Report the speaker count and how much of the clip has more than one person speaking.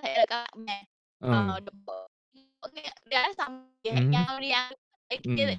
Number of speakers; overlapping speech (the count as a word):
two, about 11%